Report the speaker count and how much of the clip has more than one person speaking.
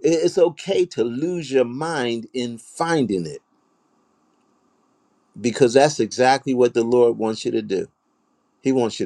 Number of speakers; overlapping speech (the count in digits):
1, no overlap